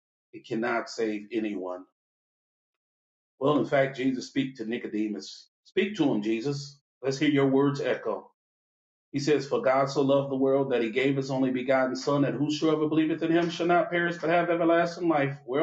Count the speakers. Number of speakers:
1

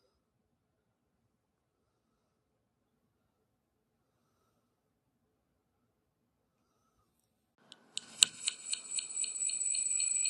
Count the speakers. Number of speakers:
0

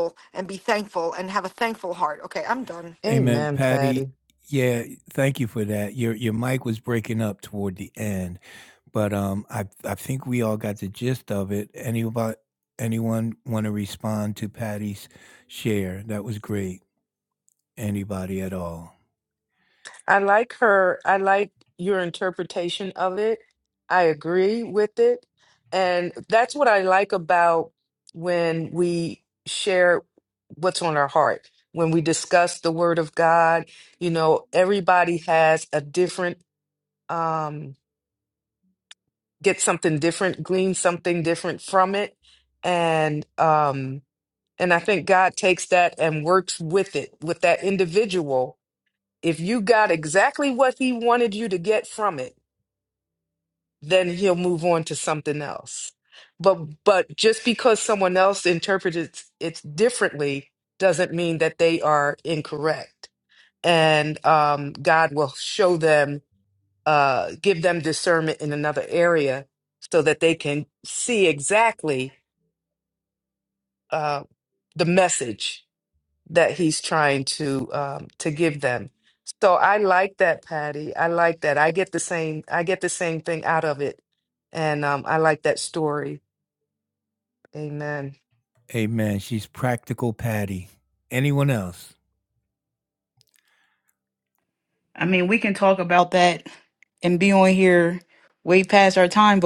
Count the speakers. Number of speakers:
4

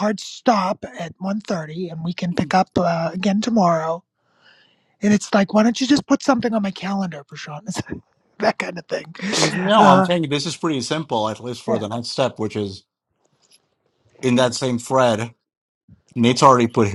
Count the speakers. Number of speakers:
2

